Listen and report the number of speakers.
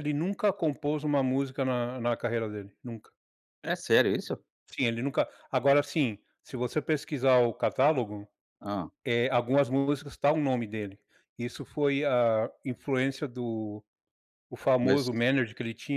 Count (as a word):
two